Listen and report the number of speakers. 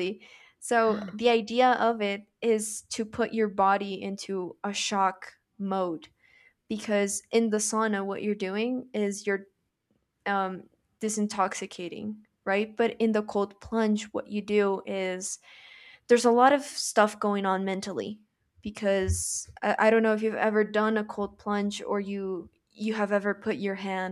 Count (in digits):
1